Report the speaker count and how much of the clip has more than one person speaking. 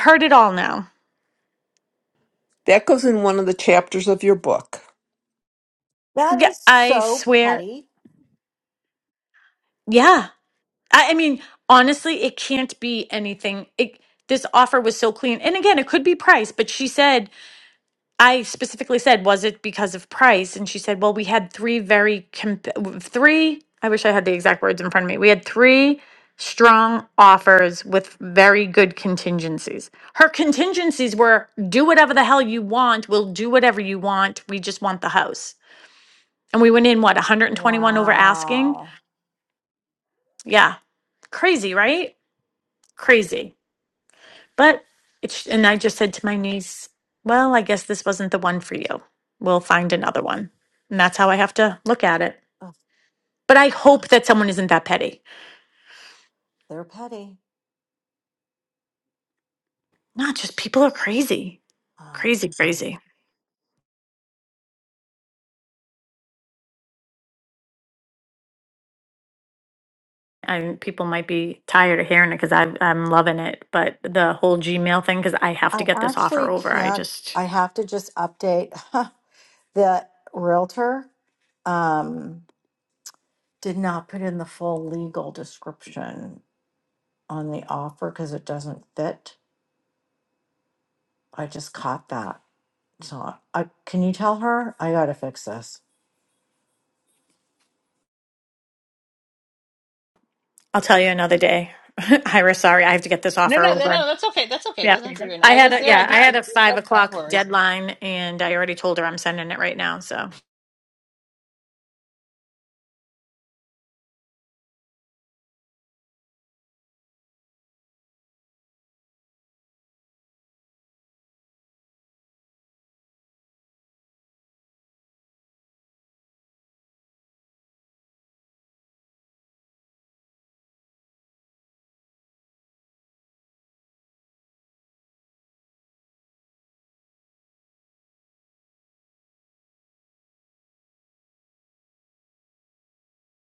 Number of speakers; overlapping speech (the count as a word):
four, about 4%